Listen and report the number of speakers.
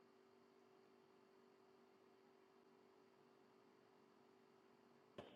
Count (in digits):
0